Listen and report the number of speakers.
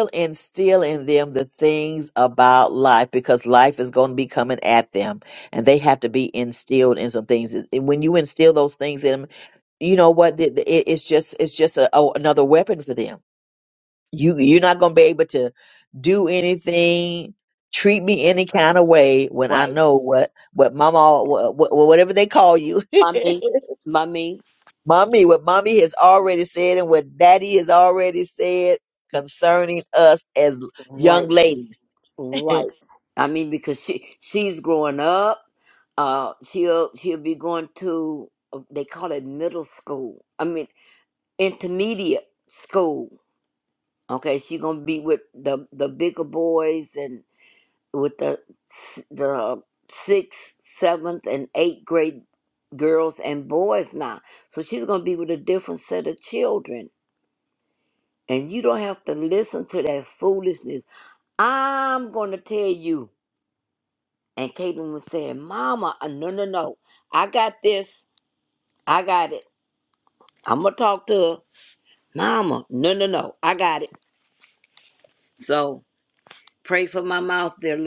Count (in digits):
2